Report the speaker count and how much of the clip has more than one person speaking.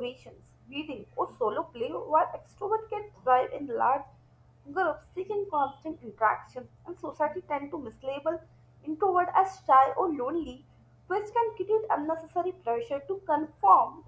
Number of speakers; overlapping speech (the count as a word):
one, no overlap